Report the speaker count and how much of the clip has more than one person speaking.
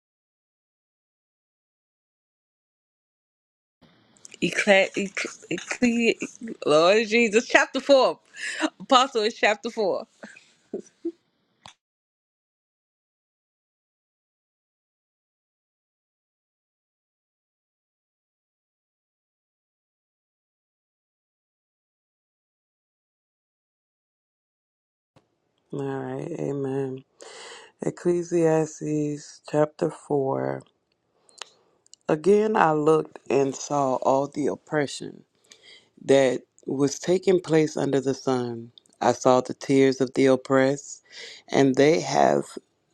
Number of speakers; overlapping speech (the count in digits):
2, no overlap